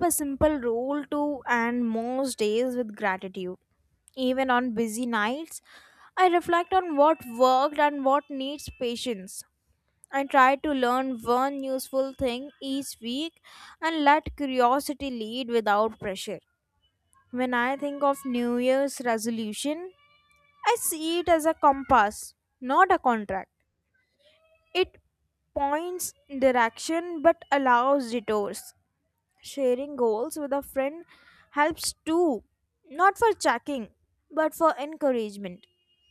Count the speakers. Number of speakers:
1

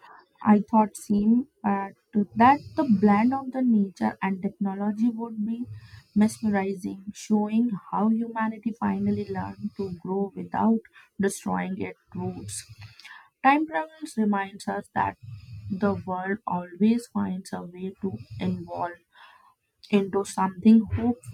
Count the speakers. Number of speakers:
1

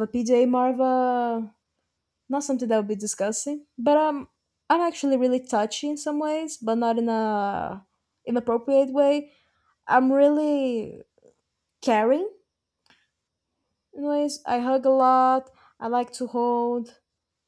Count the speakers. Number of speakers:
1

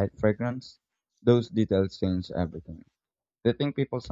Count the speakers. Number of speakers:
1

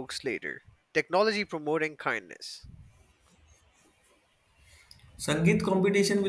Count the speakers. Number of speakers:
2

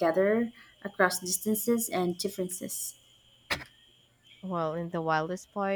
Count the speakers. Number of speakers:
2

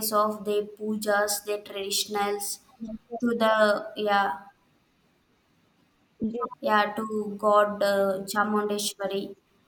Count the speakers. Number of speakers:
1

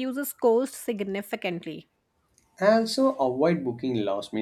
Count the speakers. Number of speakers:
2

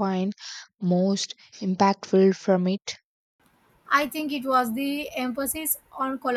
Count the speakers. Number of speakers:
2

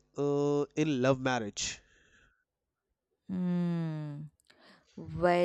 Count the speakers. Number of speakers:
2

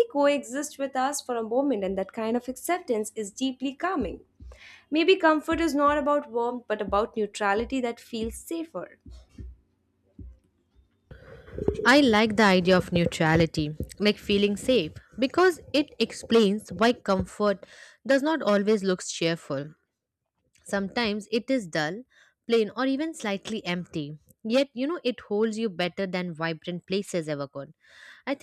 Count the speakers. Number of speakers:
2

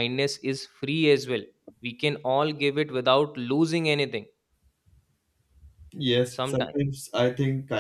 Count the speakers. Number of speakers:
2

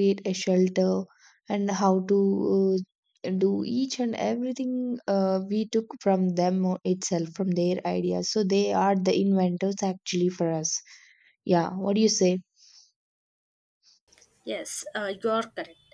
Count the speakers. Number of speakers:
2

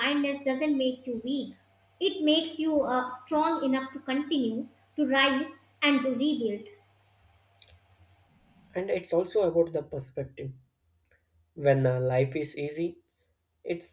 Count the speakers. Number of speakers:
2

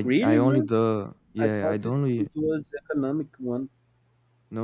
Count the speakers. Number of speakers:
2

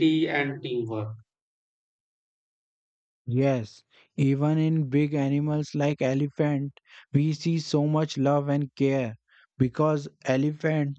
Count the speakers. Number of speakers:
2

